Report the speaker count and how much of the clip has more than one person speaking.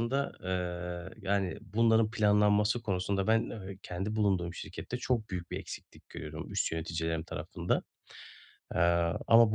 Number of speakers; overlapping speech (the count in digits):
1, no overlap